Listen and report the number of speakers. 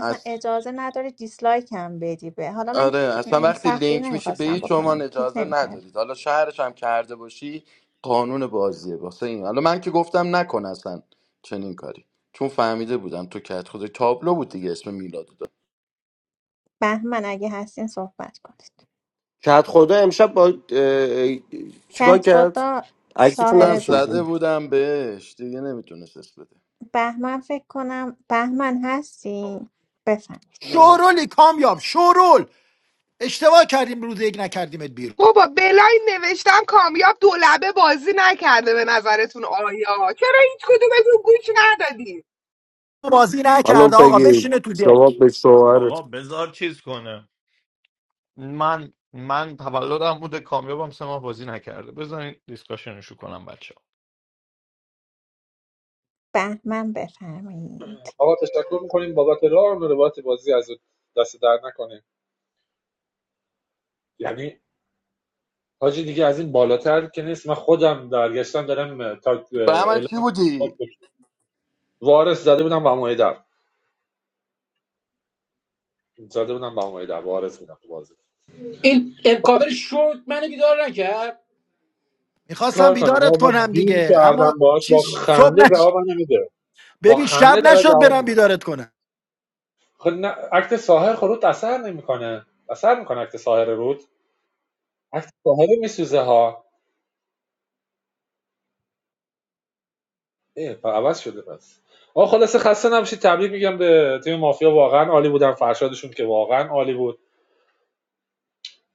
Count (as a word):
eight